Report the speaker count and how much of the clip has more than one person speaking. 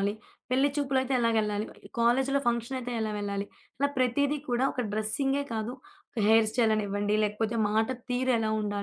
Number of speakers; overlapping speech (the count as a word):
one, no overlap